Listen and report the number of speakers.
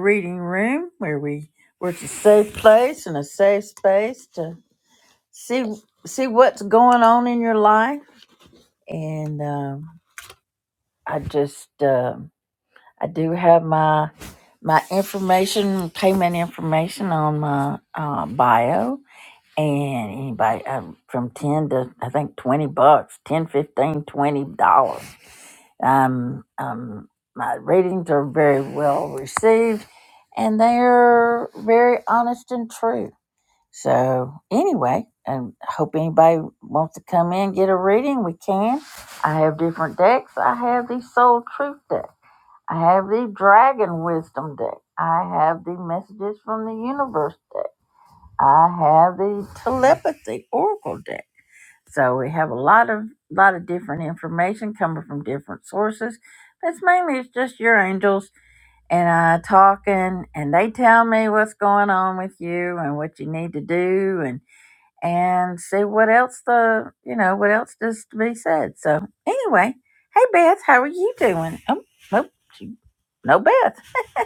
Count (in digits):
1